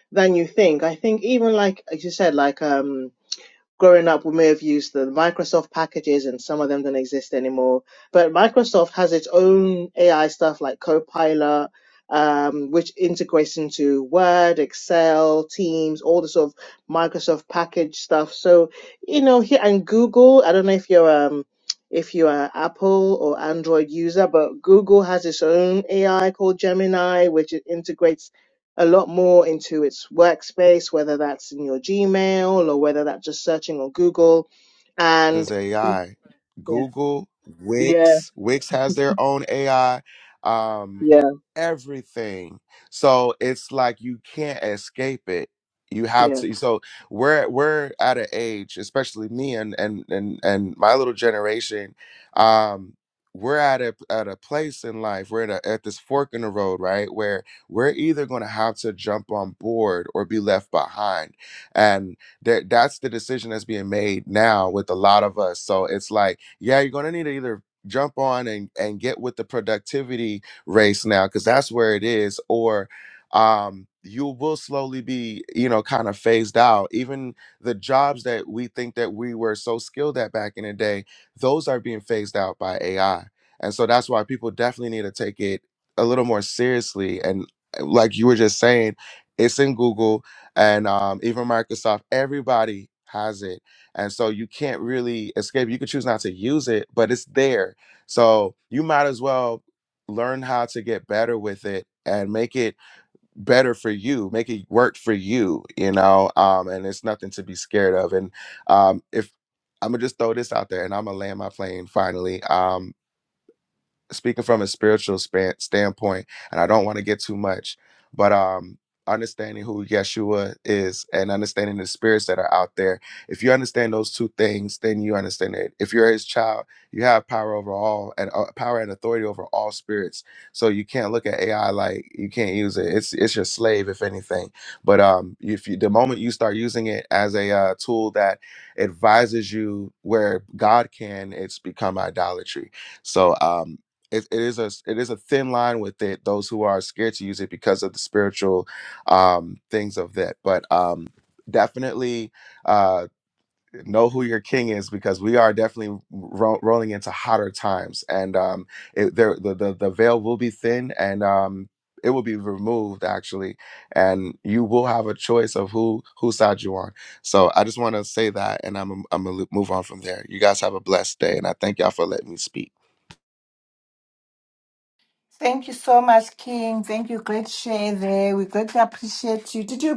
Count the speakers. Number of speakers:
three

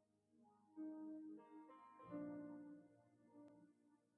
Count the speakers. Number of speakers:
zero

